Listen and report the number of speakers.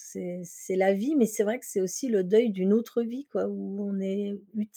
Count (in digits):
1